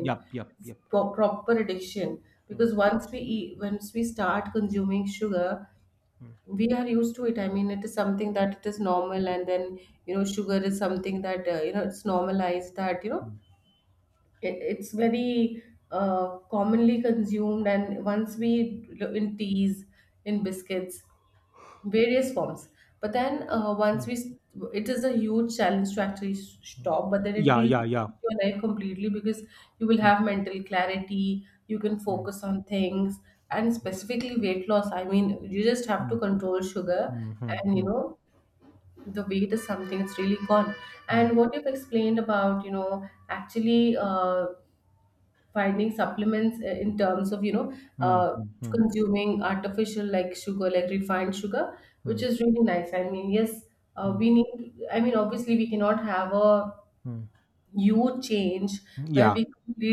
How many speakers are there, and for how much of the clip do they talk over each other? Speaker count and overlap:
two, about 5%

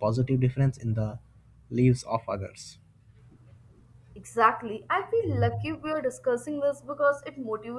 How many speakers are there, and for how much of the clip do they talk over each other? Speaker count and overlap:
two, no overlap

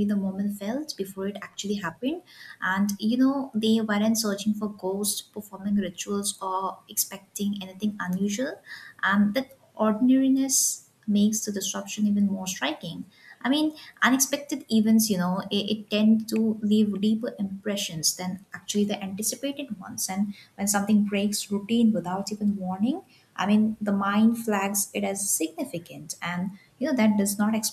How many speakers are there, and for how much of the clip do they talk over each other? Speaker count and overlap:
one, no overlap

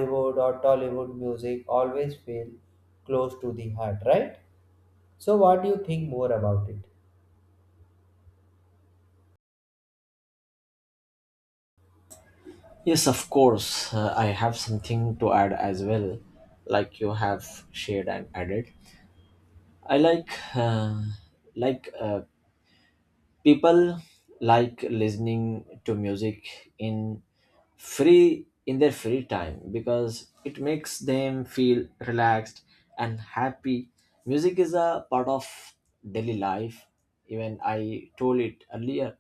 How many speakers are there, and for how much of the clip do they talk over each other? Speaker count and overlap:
two, no overlap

